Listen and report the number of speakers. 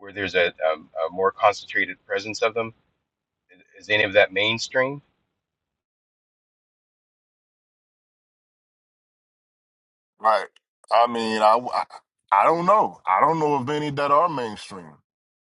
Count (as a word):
two